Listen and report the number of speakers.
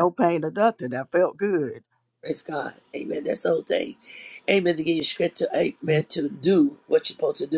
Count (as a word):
two